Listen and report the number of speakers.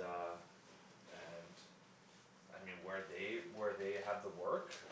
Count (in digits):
1